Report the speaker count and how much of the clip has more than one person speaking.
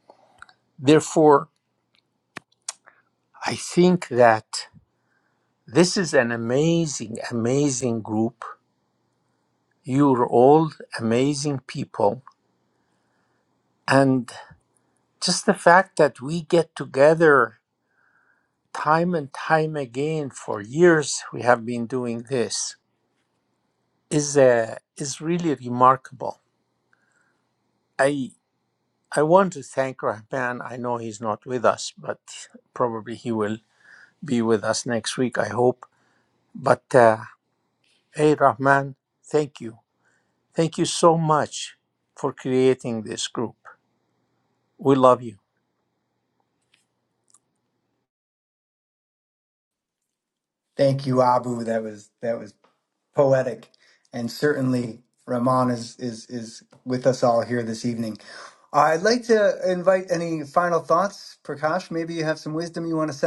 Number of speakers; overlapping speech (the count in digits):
2, no overlap